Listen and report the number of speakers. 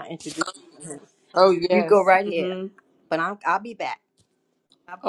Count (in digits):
2